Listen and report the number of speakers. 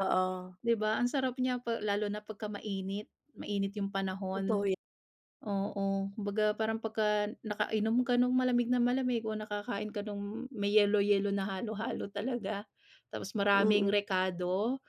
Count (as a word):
two